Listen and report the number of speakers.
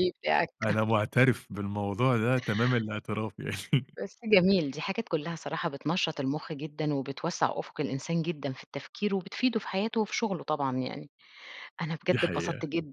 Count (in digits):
2